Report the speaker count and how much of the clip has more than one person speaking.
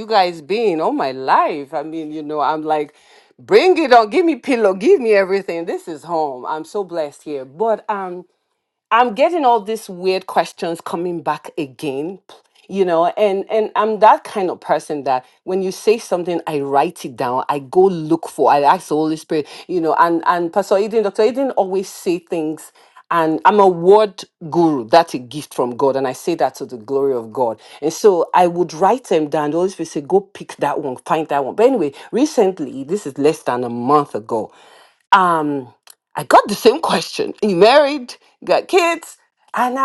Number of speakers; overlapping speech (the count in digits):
1, no overlap